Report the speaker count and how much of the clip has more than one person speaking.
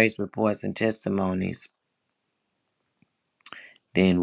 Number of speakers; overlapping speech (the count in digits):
1, no overlap